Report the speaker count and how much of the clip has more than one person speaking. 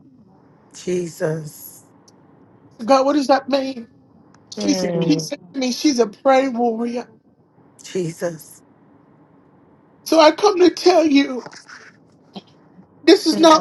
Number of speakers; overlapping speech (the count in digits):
2, about 7%